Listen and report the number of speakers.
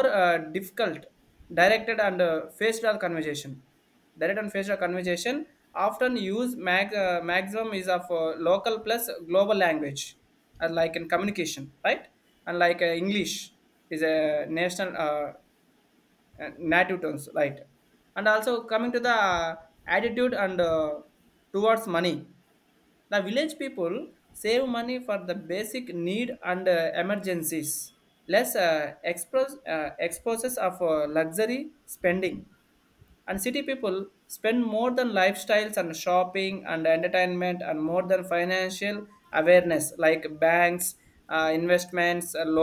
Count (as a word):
one